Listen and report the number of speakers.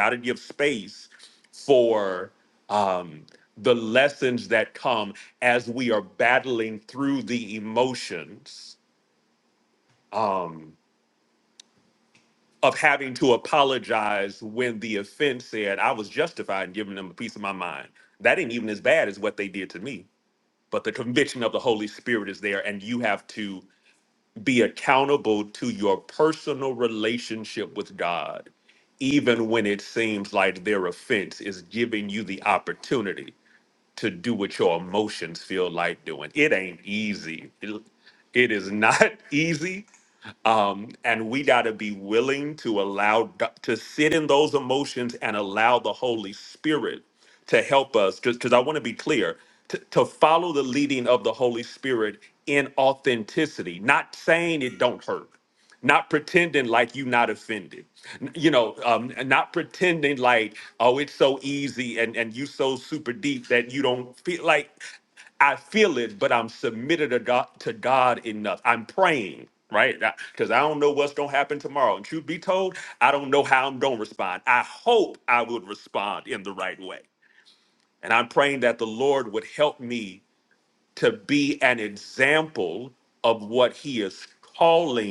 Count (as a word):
one